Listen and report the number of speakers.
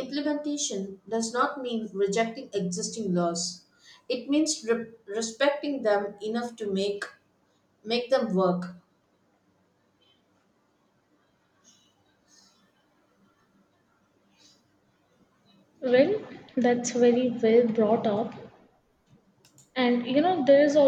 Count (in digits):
2